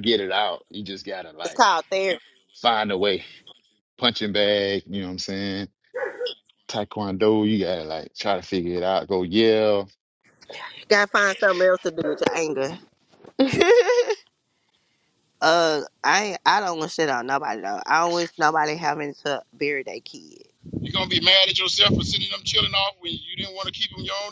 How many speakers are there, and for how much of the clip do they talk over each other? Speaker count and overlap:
3, about 1%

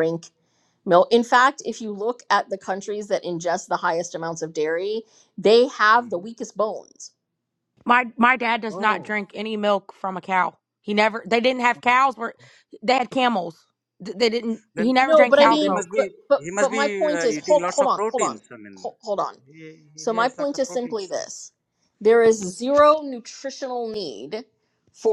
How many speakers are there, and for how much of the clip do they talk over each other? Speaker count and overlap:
3, about 21%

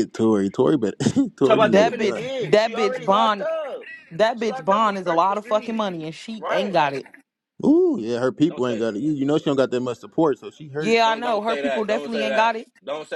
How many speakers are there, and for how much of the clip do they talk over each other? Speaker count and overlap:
3, about 43%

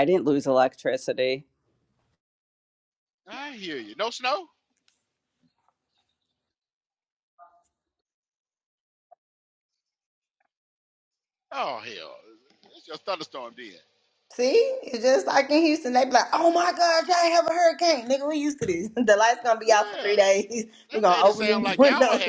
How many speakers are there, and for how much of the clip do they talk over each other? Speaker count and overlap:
3, about 9%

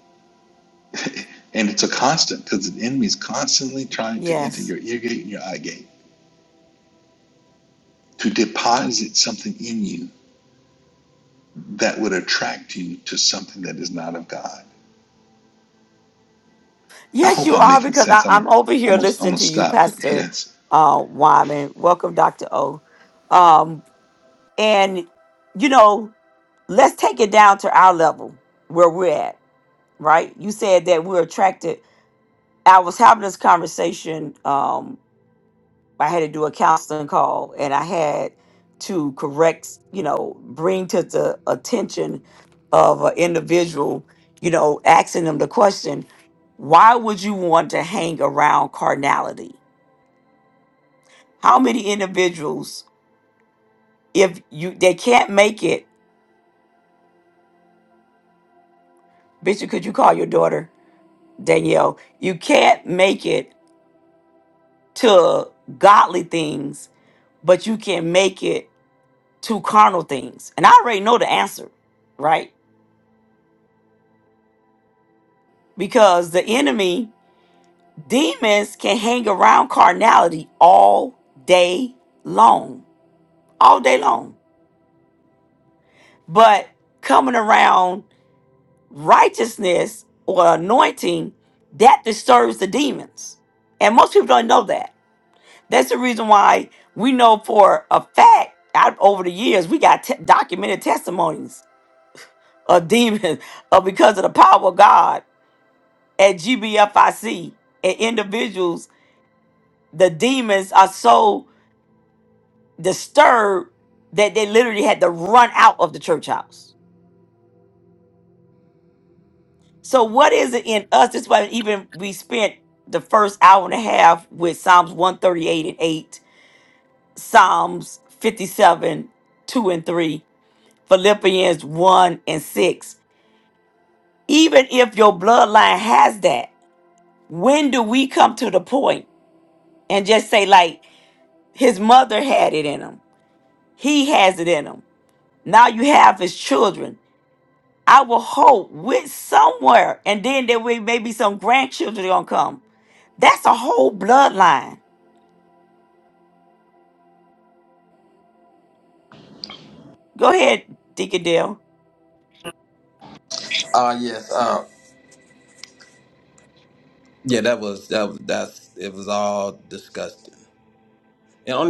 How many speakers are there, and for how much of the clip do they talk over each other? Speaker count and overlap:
3, about 2%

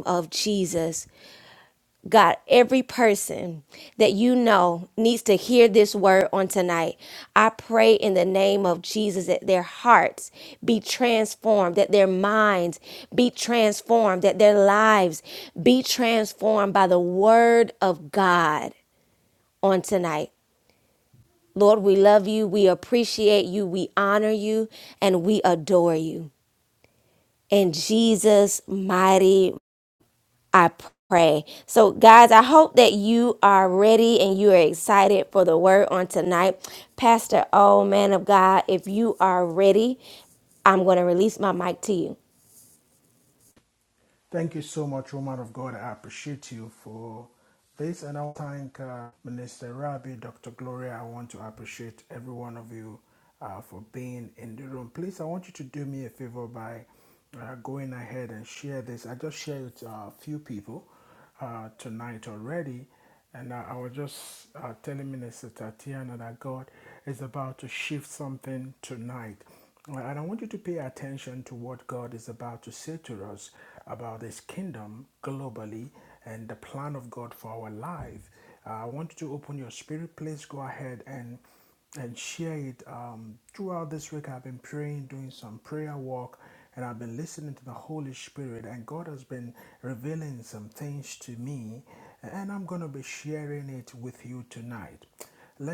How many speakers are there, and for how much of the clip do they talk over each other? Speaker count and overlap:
2, no overlap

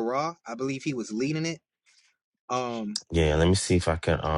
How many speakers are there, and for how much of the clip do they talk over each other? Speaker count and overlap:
2, no overlap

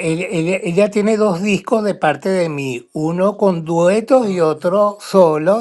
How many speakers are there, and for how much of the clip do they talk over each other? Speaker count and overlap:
1, no overlap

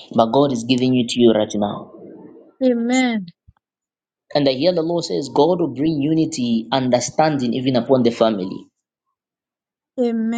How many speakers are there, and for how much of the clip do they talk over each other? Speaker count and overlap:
2, no overlap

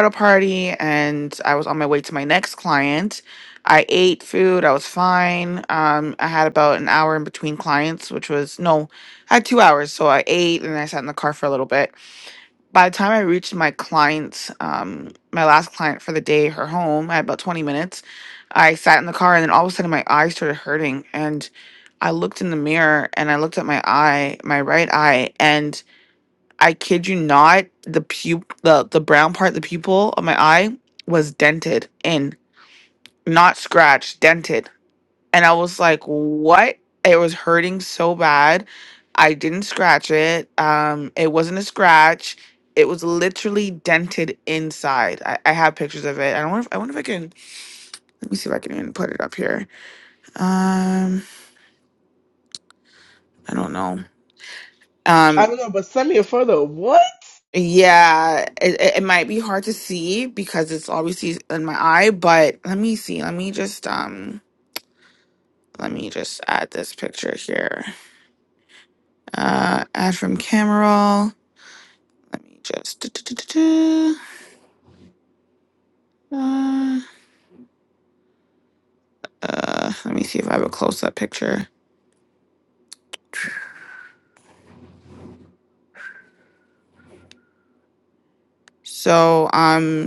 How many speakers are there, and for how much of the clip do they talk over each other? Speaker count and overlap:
2, under 1%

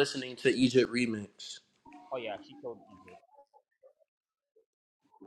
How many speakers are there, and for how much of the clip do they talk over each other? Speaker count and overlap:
2, no overlap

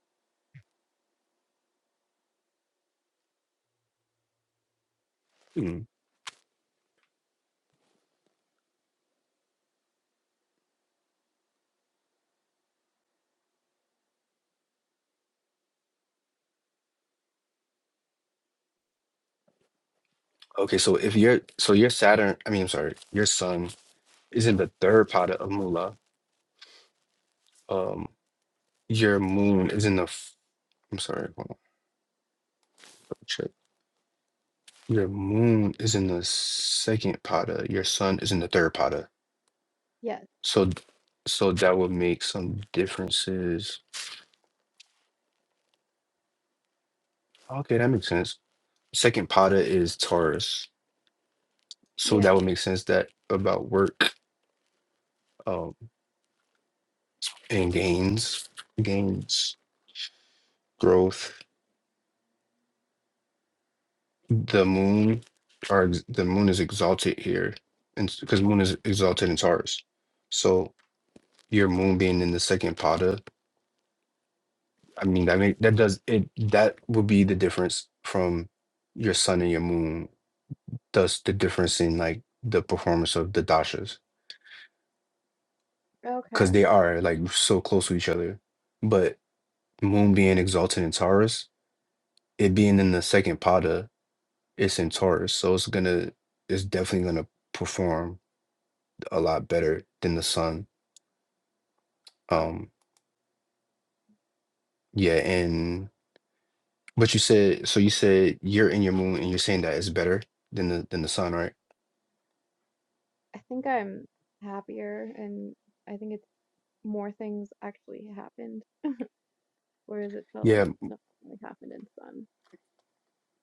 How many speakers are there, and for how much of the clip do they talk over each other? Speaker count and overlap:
2, about 1%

